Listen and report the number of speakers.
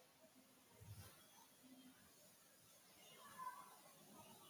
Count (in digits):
0